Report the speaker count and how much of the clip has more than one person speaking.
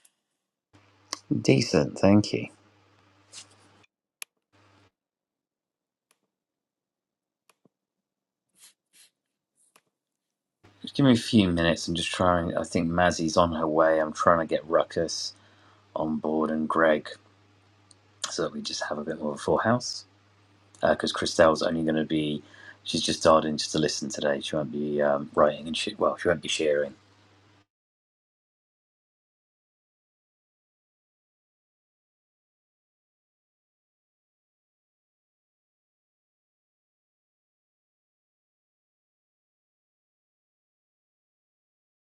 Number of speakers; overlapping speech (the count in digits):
1, no overlap